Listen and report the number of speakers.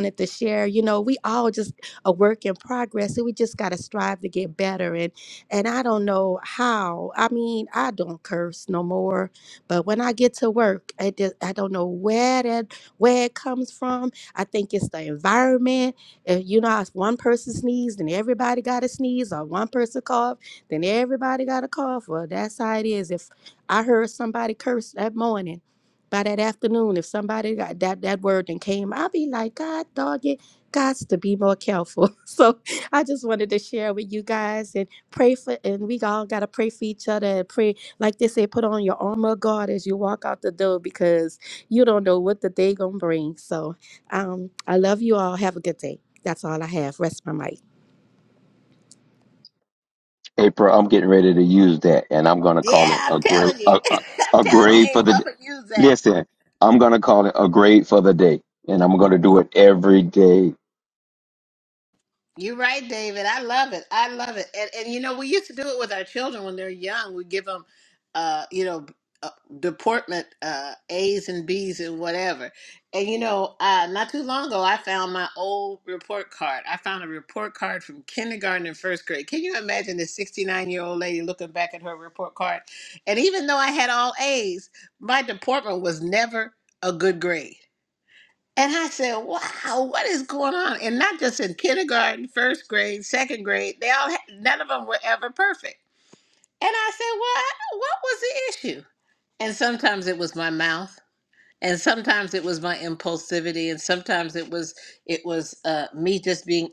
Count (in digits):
3